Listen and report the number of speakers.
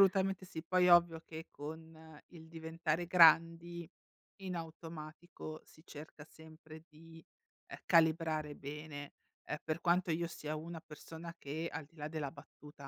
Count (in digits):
1